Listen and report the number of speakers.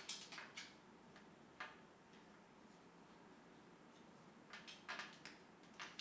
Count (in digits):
0